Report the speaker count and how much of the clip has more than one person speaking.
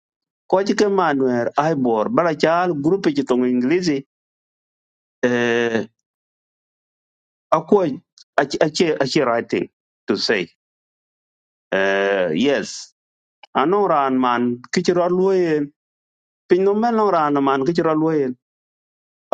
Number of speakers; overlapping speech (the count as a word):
one, no overlap